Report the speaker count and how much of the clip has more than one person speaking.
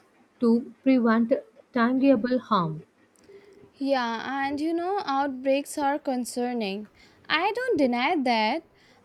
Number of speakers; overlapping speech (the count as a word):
two, no overlap